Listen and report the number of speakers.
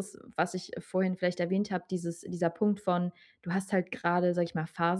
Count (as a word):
one